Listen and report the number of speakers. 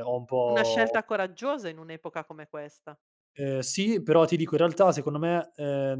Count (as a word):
two